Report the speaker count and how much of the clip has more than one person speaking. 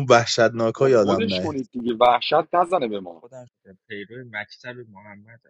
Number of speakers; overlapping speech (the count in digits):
3, about 13%